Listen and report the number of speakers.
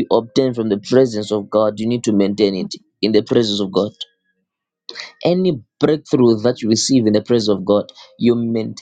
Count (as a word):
one